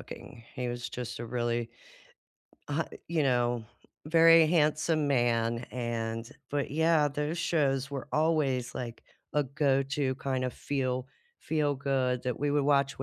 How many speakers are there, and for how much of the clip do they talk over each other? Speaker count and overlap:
one, no overlap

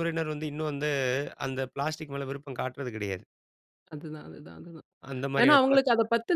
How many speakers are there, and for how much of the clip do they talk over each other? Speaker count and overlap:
two, about 7%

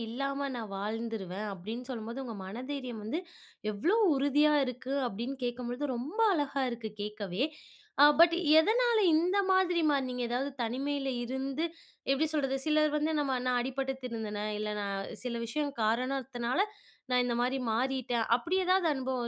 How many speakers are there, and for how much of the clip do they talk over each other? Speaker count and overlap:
one, no overlap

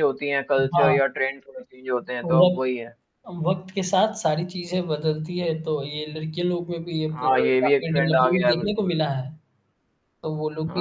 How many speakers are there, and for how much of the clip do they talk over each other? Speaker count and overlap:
two, about 25%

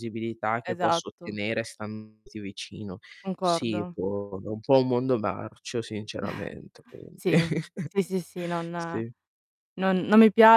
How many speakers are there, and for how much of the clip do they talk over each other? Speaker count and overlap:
two, about 12%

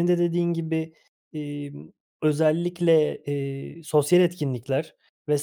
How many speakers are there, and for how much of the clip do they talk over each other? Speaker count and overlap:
one, no overlap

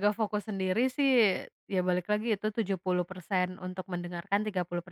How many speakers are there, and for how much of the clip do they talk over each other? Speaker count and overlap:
one, no overlap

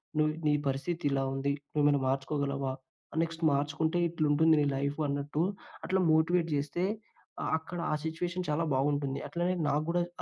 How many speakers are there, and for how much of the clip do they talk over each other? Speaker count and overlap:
one, no overlap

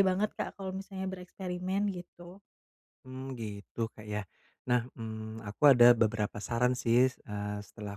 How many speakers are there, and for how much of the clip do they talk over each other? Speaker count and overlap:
two, no overlap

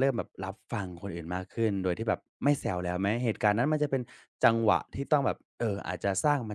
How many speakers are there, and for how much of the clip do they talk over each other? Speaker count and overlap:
one, no overlap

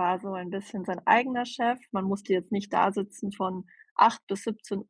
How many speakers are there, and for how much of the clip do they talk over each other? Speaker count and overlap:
one, no overlap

